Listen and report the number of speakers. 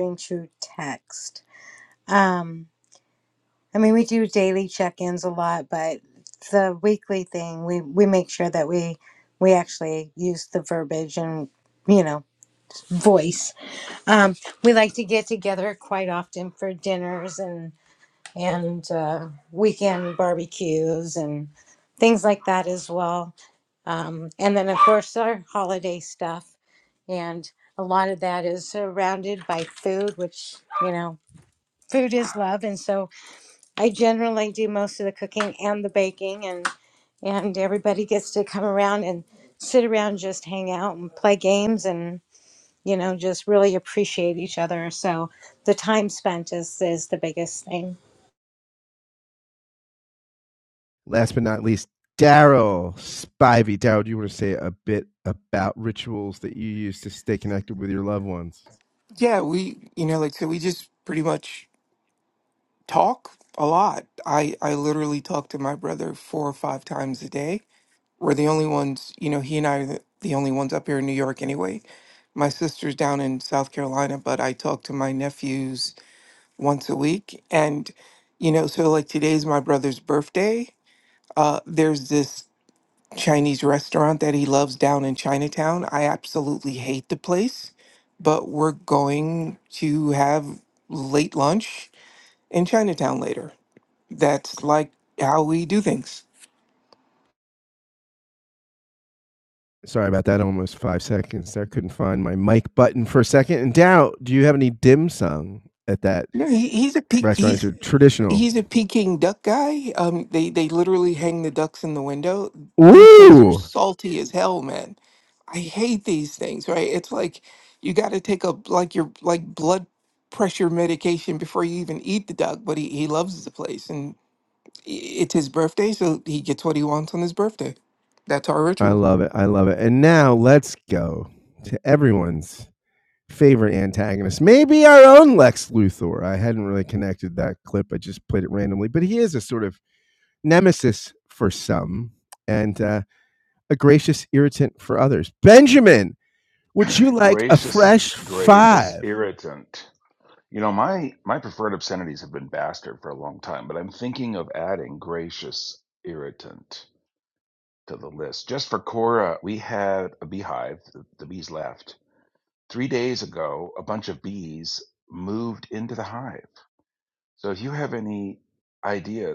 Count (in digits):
4